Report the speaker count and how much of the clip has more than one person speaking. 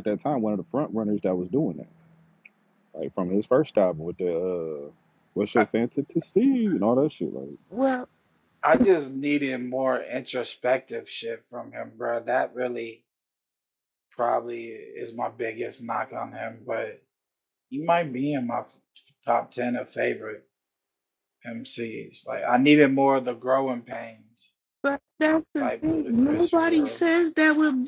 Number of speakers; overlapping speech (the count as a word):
three, about 5%